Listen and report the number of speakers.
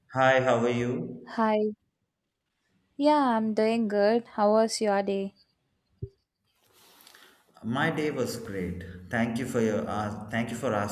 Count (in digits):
2